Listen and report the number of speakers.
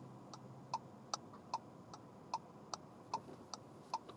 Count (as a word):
zero